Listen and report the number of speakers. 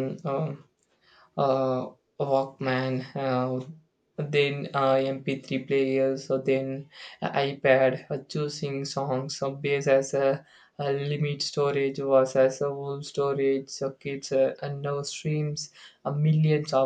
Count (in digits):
1